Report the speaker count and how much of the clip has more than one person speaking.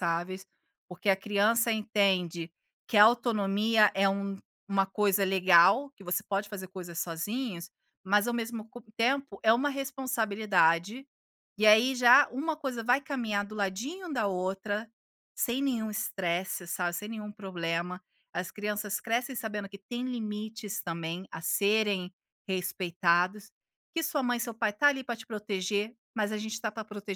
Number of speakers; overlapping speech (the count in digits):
1, no overlap